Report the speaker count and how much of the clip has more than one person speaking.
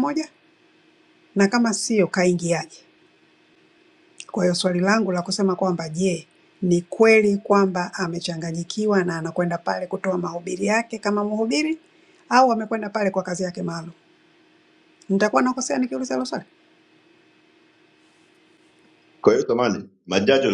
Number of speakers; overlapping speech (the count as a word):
two, no overlap